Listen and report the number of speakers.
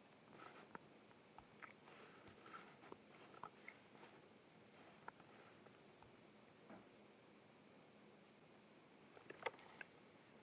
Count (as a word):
zero